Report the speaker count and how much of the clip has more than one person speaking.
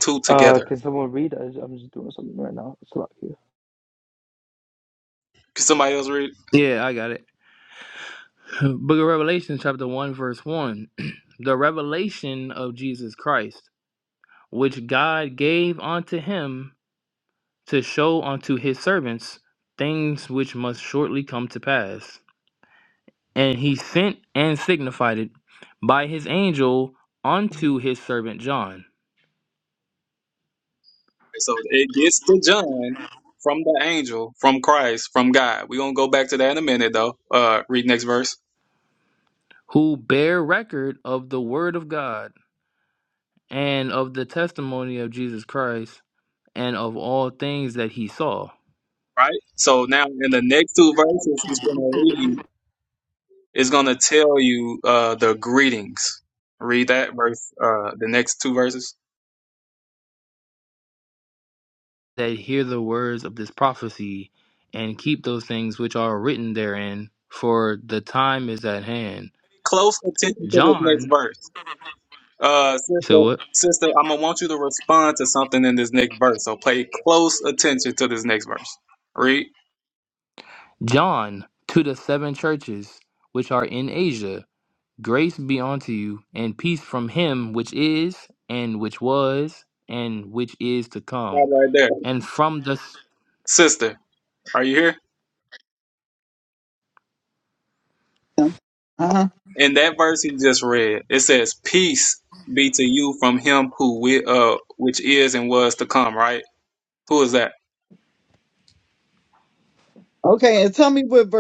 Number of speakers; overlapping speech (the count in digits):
4, about 1%